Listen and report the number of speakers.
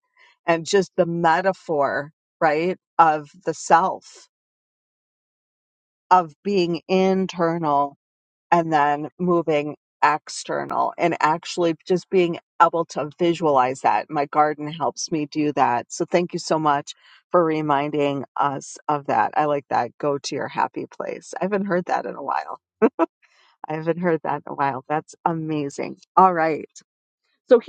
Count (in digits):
1